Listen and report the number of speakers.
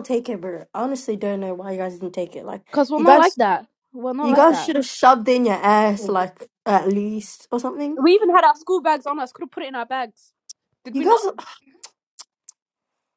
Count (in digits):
3